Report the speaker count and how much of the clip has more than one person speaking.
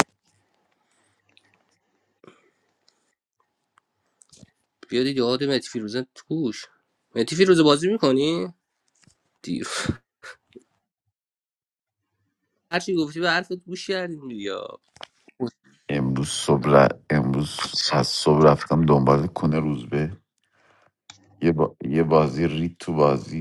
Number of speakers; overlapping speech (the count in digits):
2, no overlap